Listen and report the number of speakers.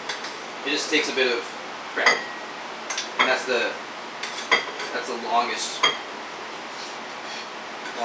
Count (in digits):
1